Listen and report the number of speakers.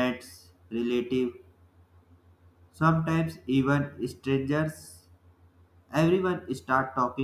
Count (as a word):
one